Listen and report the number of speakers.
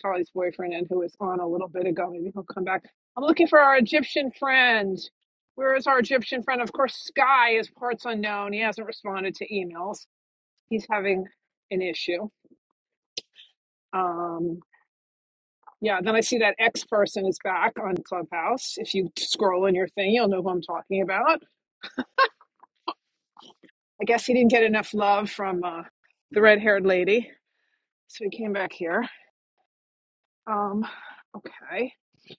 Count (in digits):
1